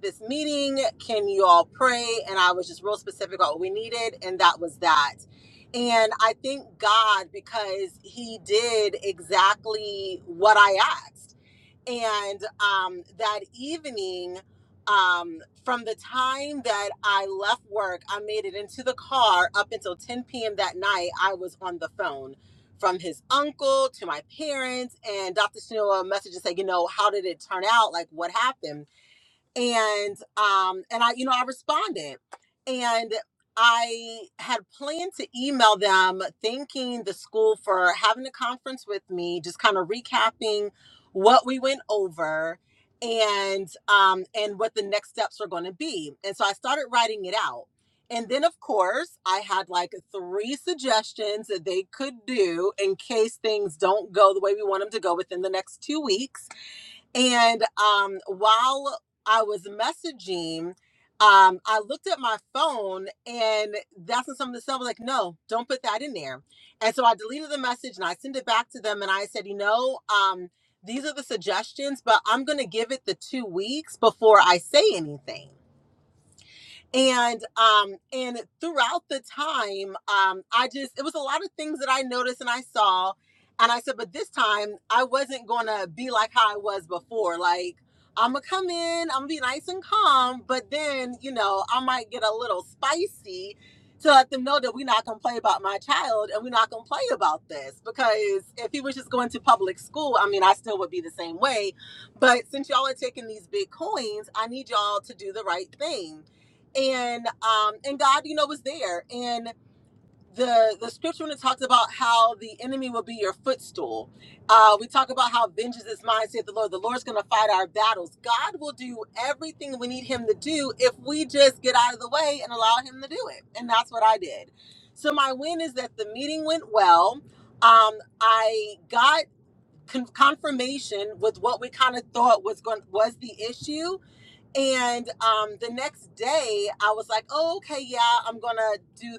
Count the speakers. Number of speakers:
one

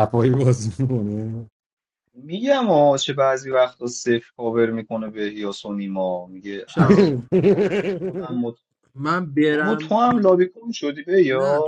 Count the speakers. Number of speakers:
three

